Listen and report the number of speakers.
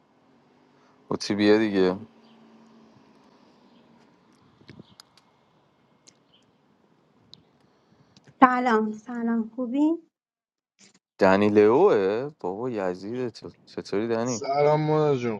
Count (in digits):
3